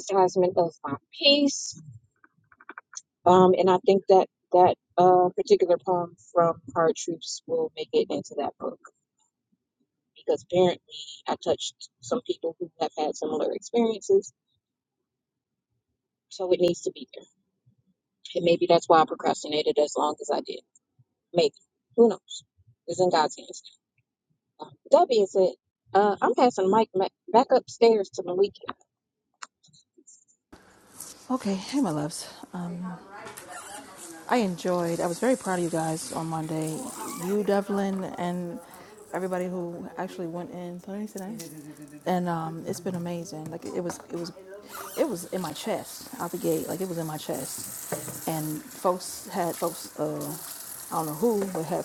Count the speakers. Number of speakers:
2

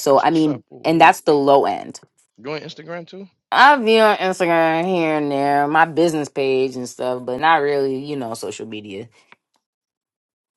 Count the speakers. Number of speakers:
2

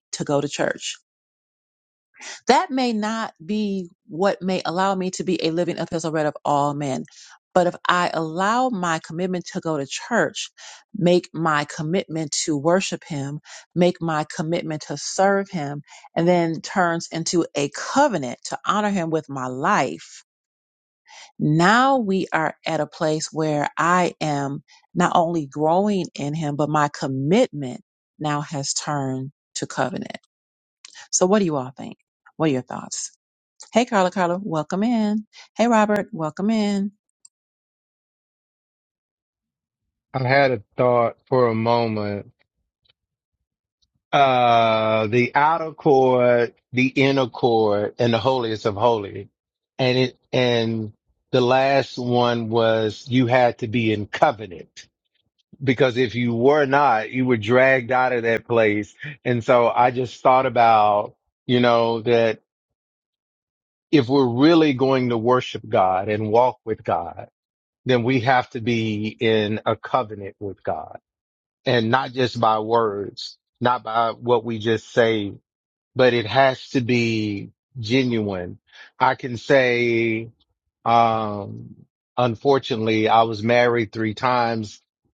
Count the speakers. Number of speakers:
2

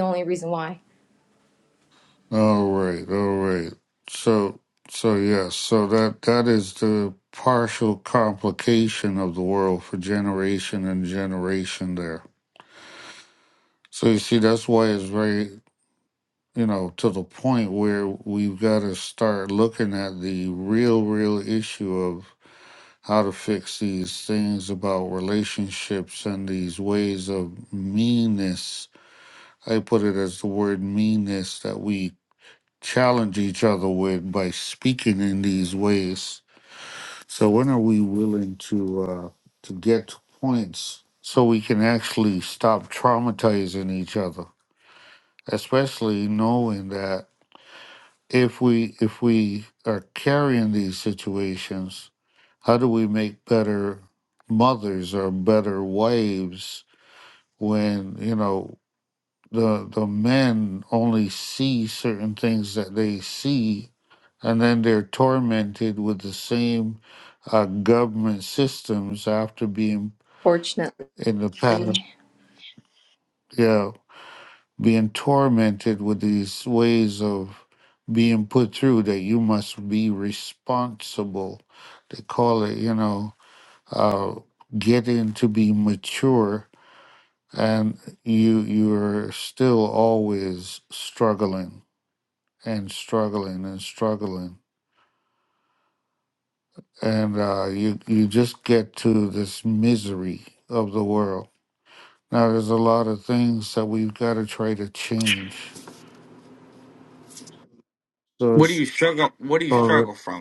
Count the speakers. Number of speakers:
3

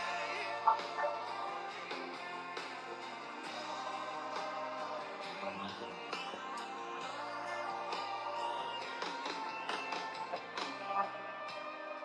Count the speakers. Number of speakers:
0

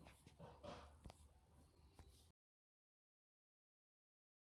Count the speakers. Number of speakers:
0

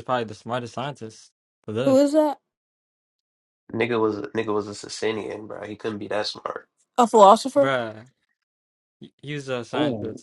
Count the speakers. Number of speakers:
3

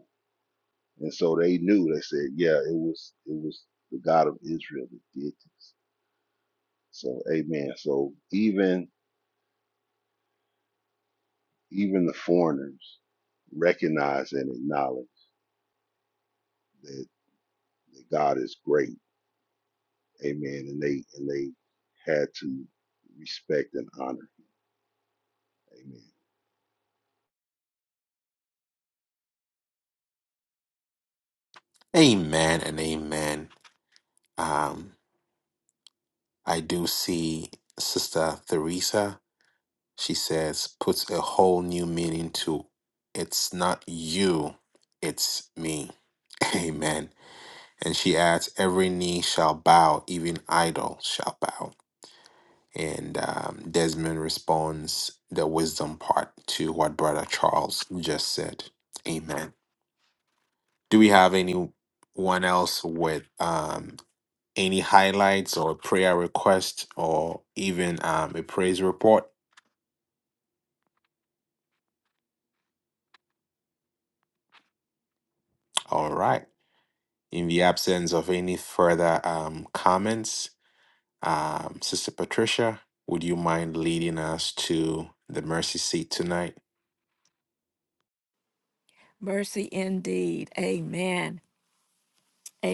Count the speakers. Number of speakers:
3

